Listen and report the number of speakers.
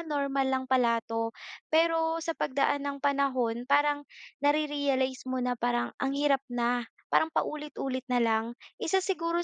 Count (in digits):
1